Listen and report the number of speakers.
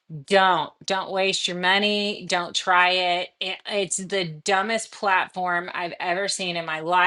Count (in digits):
1